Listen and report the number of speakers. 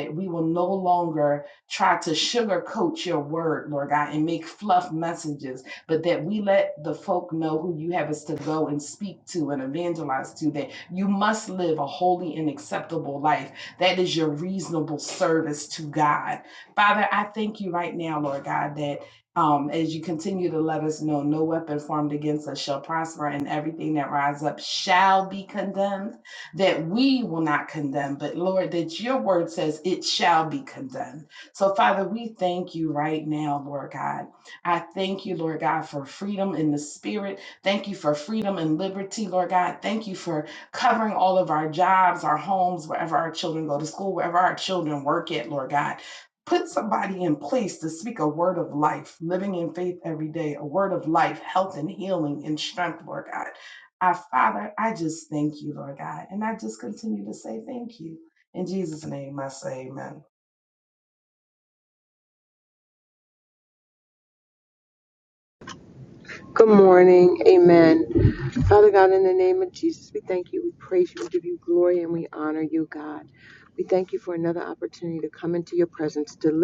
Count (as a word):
two